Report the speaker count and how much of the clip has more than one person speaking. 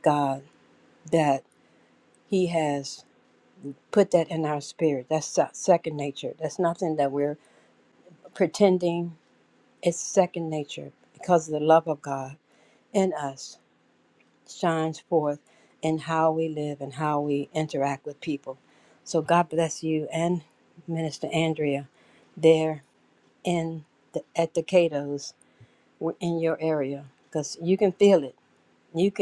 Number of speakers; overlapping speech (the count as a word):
one, no overlap